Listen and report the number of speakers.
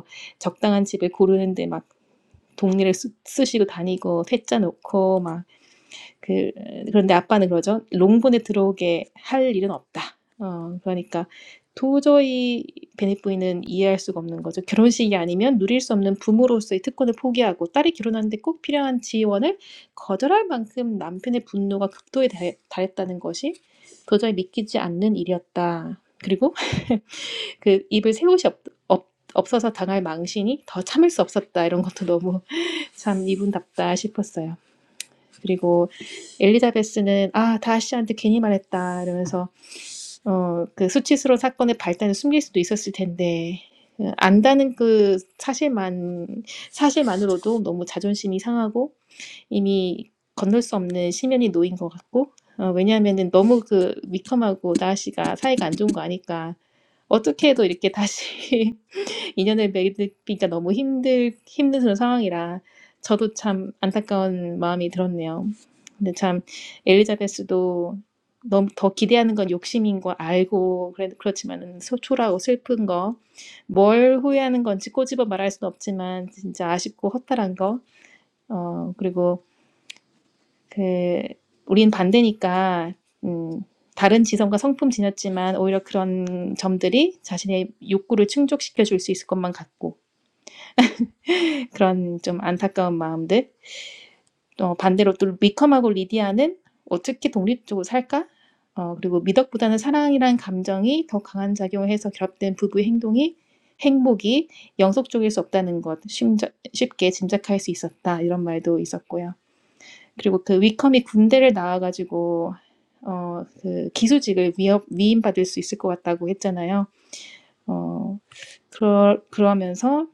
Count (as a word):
one